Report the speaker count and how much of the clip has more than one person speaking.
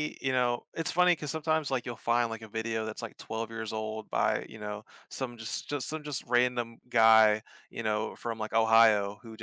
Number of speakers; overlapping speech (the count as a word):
one, no overlap